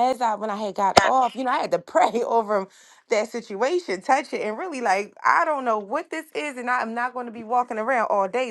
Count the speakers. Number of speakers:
one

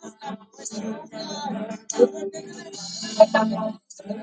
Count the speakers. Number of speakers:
zero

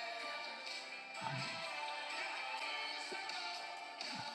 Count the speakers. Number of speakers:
zero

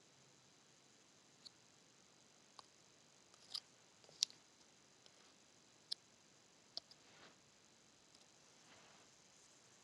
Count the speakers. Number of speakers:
zero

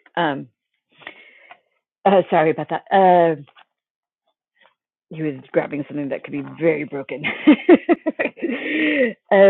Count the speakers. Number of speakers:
one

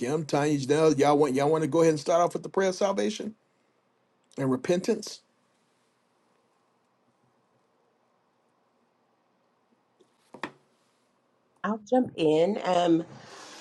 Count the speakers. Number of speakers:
two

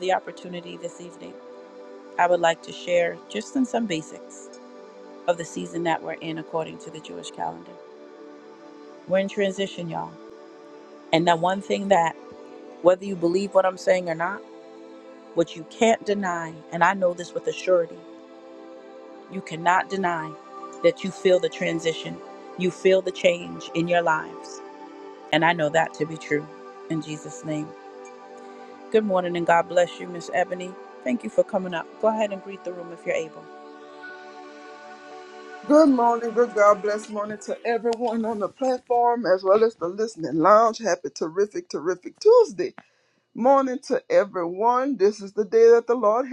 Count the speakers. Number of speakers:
two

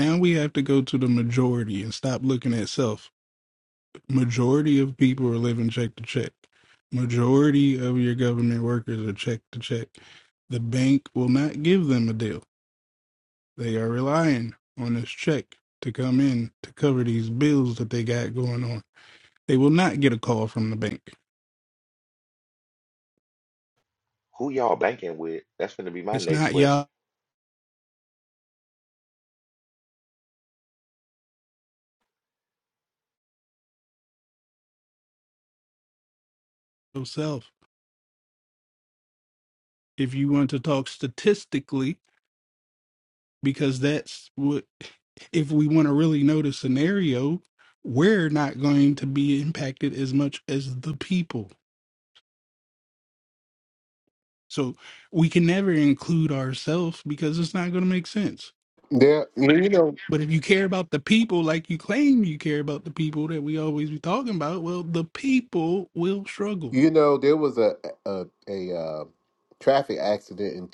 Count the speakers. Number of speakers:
three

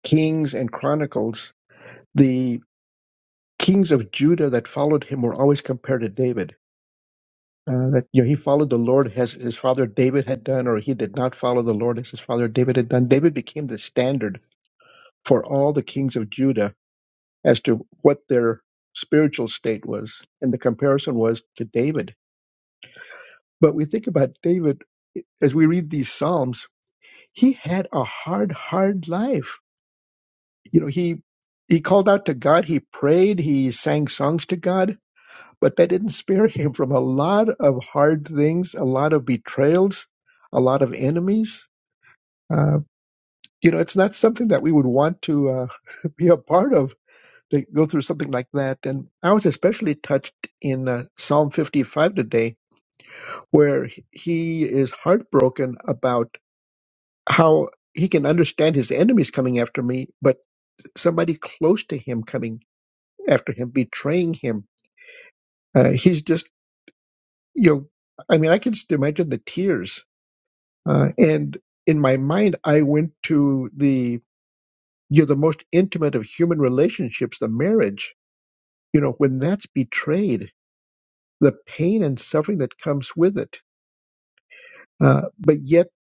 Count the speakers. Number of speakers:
one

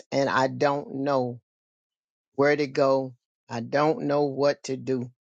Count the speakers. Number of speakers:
one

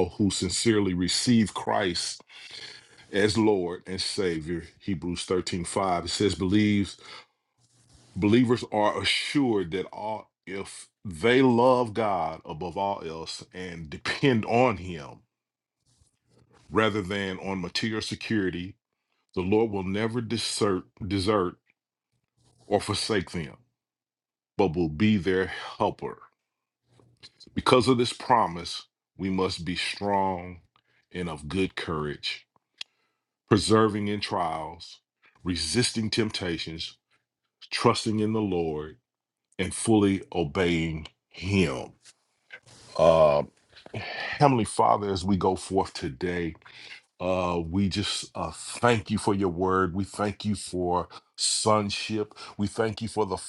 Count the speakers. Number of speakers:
one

